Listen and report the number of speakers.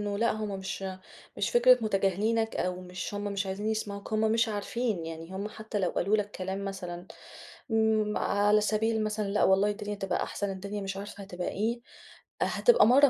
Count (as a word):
one